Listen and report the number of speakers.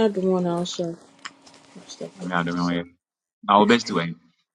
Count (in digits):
2